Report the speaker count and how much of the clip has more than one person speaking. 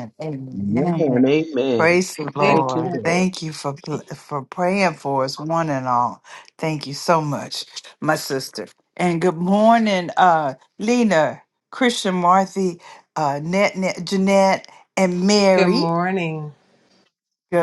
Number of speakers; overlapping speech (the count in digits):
3, about 12%